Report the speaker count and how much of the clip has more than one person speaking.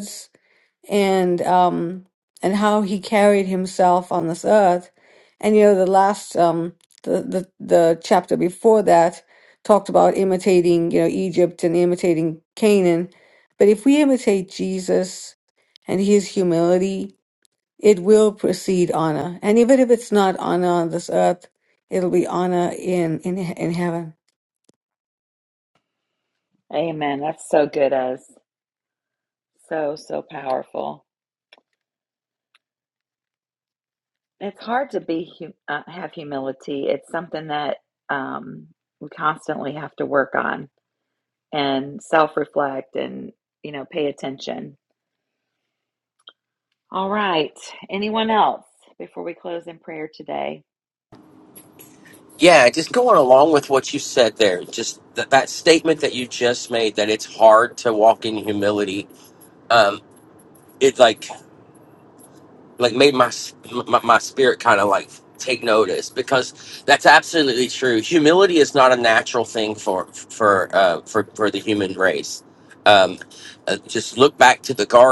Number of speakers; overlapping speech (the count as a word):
three, no overlap